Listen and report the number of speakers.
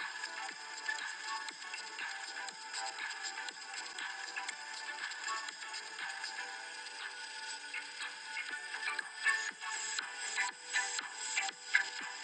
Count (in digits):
0